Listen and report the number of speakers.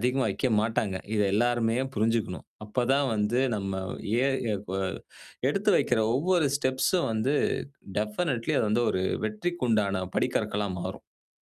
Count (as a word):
one